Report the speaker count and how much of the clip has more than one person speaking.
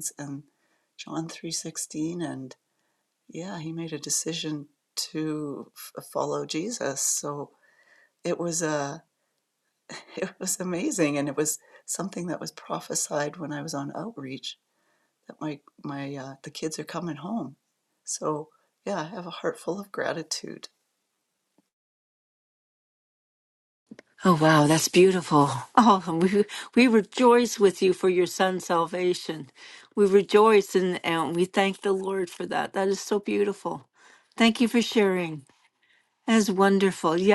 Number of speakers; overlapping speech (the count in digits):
2, no overlap